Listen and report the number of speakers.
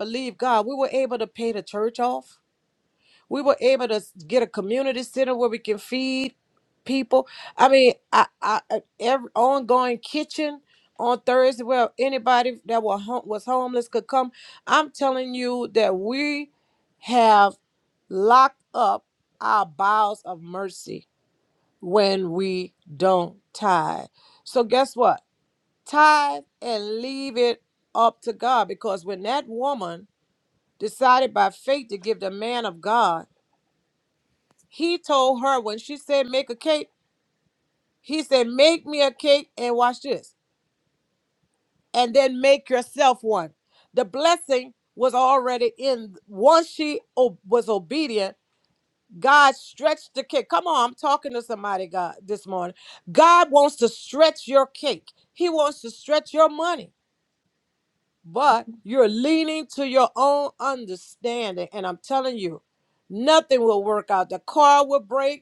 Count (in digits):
1